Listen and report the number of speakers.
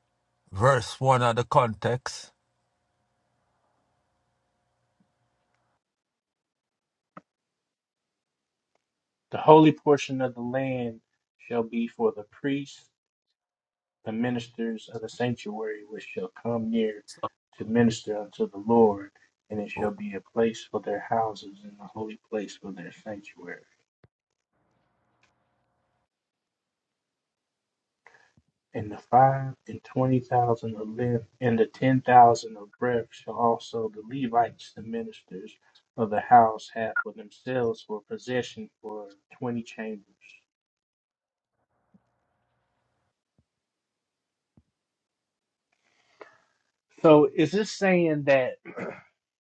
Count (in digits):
2